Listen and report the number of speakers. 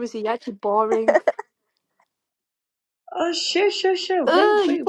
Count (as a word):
two